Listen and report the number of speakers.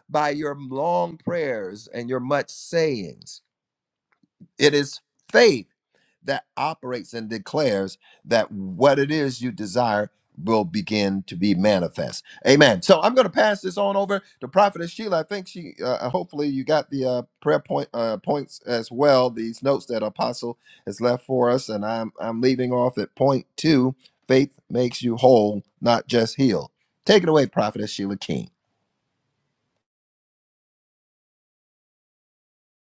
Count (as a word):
one